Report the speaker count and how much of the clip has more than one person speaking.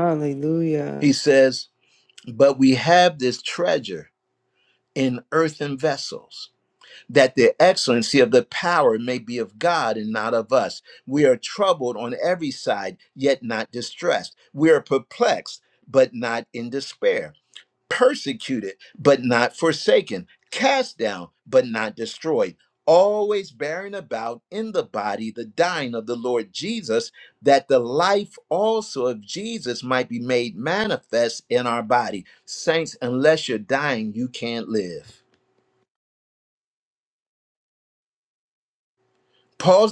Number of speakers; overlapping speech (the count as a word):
two, no overlap